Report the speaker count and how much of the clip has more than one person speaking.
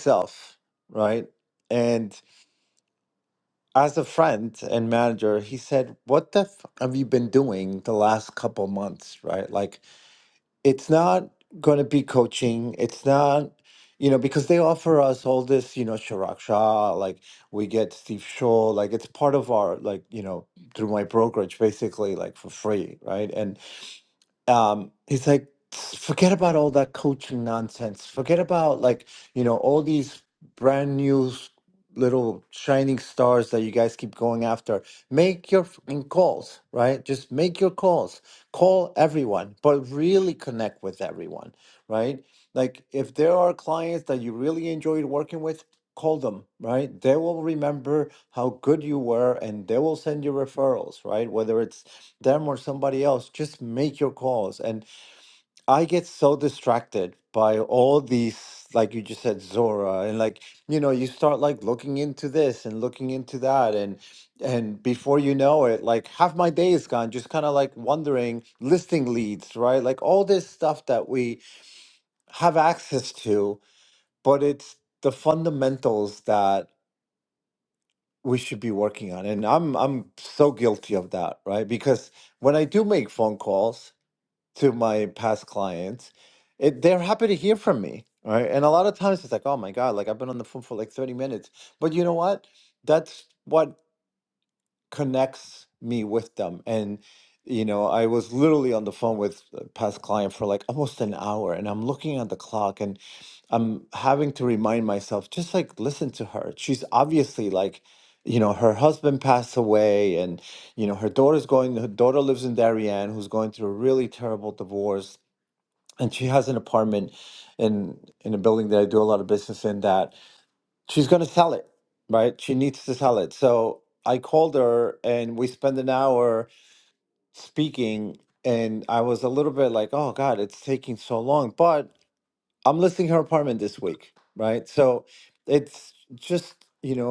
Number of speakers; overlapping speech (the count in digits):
1, no overlap